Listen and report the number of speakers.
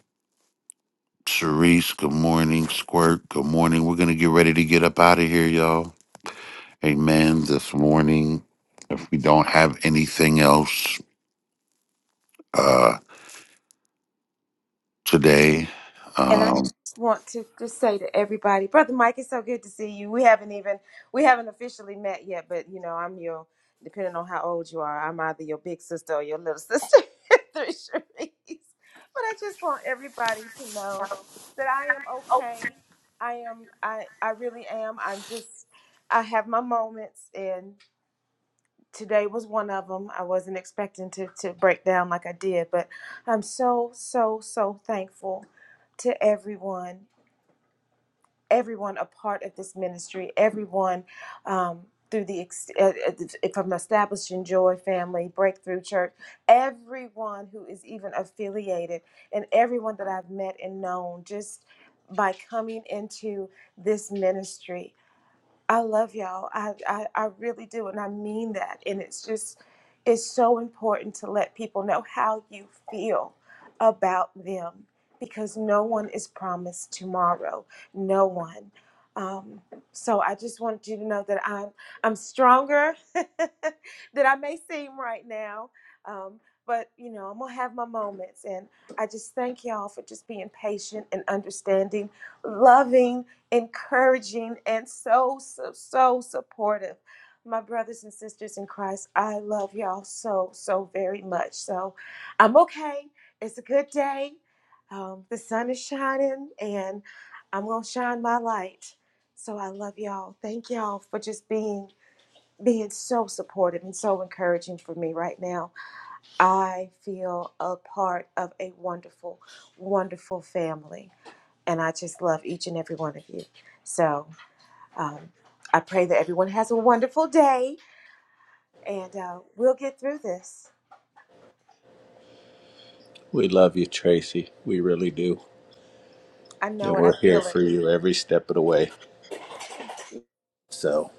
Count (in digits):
3